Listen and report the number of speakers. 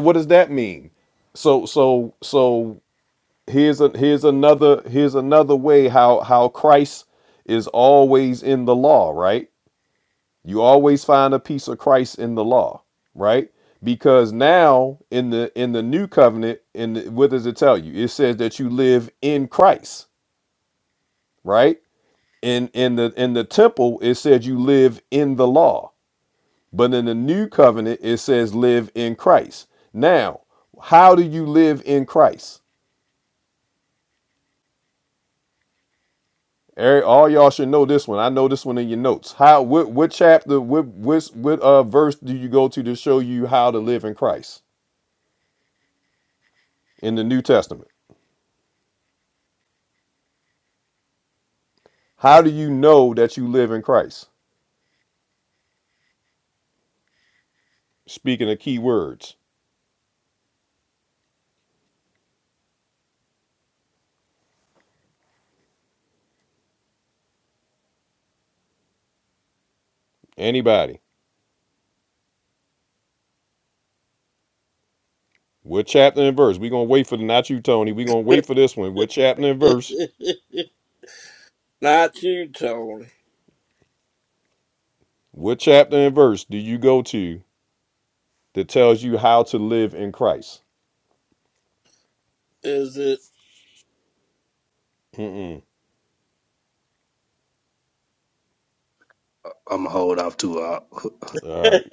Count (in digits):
3